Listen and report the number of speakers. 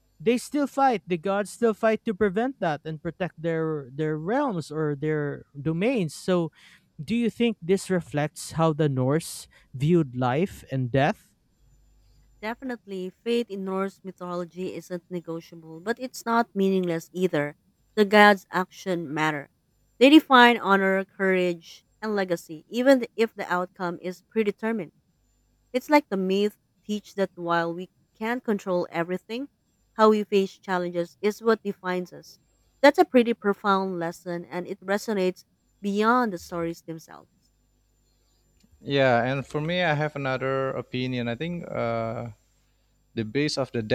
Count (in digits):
3